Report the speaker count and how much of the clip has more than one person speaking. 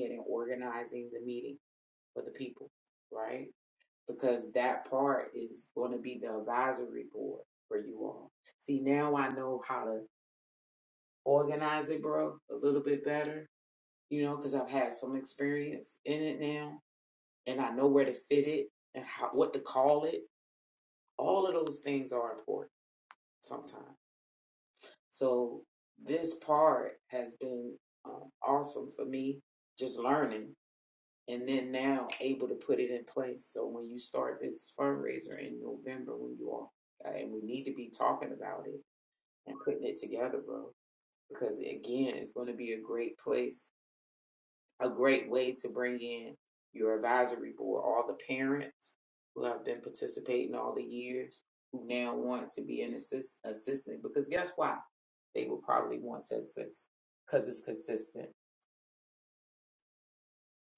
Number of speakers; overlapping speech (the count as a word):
one, no overlap